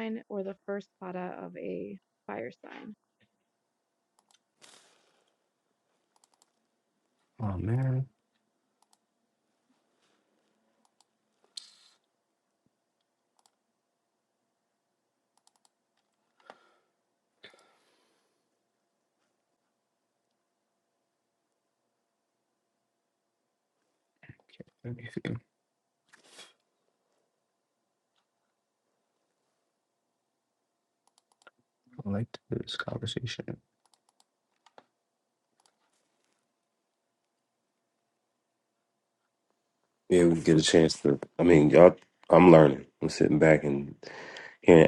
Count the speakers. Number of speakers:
3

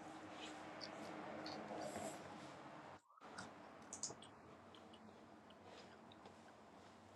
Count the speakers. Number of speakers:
0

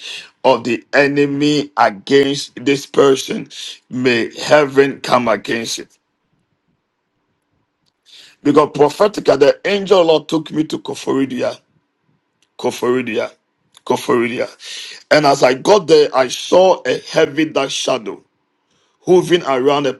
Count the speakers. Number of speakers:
1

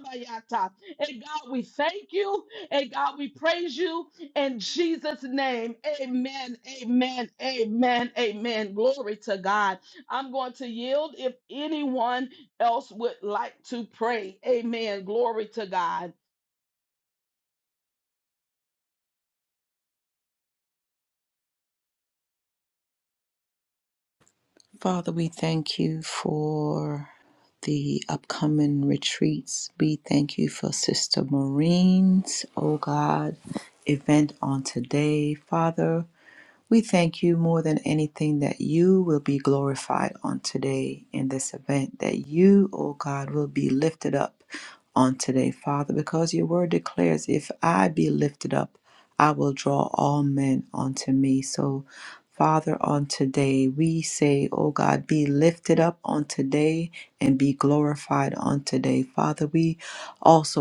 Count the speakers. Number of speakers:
2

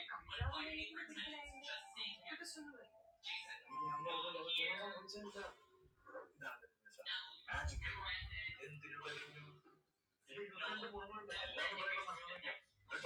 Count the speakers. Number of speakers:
0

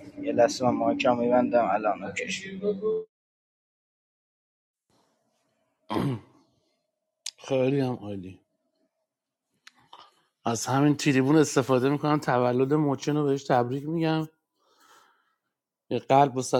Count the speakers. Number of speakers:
2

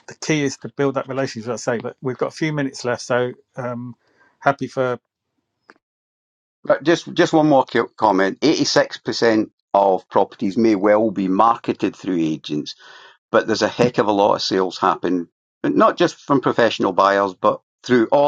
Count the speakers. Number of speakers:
2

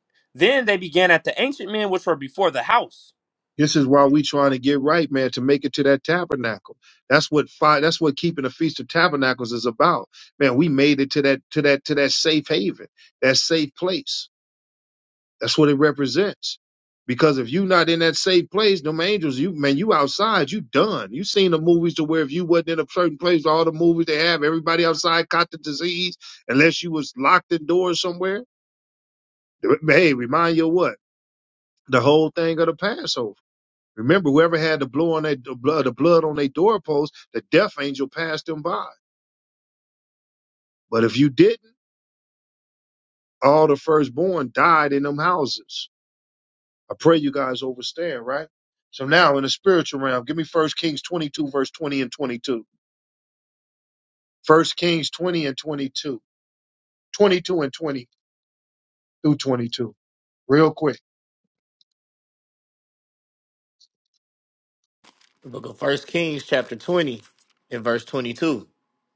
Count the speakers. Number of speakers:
3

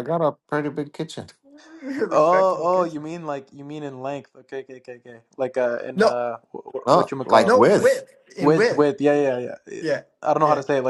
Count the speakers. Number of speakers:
3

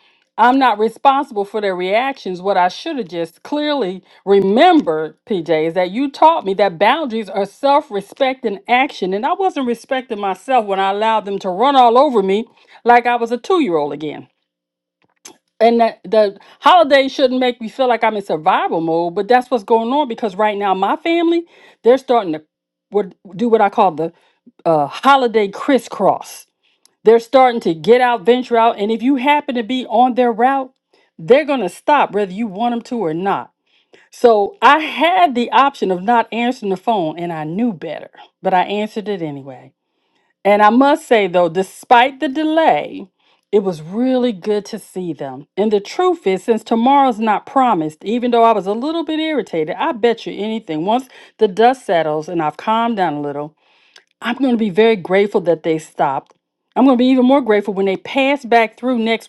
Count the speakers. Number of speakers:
1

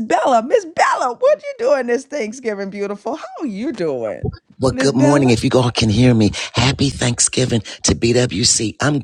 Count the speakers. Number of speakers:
2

